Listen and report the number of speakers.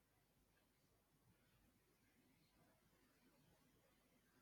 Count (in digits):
0